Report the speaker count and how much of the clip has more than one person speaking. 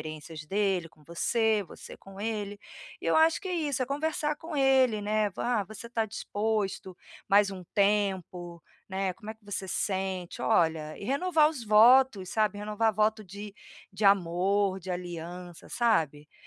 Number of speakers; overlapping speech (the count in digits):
1, no overlap